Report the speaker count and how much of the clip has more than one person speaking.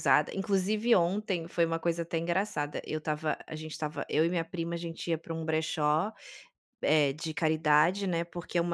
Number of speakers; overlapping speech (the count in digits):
1, no overlap